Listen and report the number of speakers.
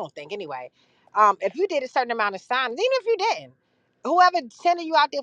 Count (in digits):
1